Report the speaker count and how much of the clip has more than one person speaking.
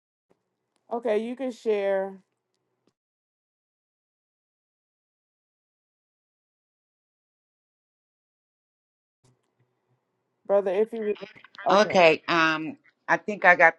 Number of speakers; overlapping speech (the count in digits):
2, about 2%